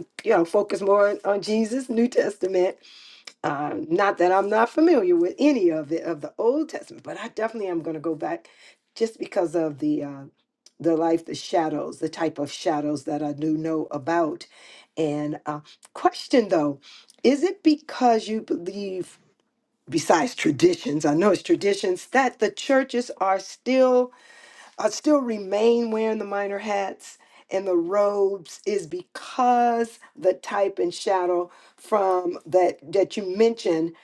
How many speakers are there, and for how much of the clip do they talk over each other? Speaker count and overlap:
1, no overlap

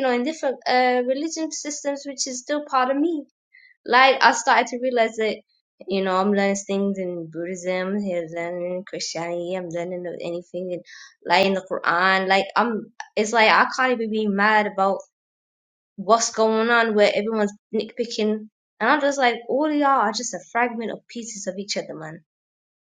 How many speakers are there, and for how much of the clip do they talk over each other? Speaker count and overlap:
1, no overlap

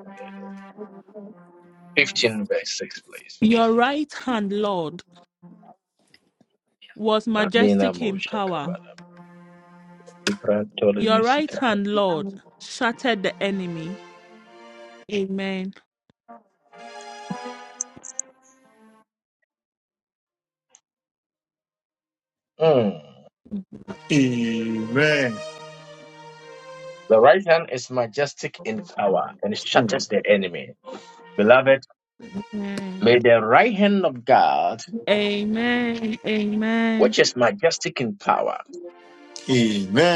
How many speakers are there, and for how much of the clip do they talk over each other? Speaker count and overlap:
3, about 7%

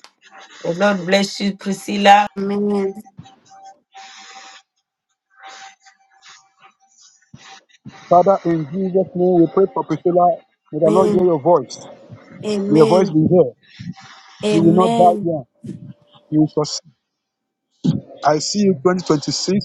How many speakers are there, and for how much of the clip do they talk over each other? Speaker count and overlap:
3, about 9%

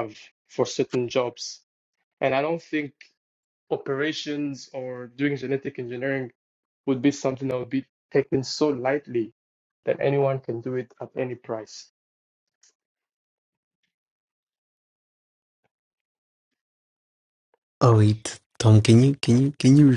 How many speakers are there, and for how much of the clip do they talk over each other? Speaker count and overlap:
2, no overlap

